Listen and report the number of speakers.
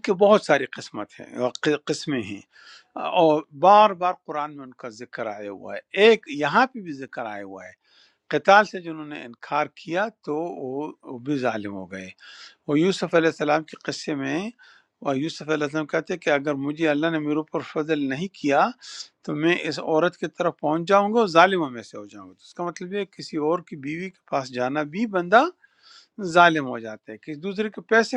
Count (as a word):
one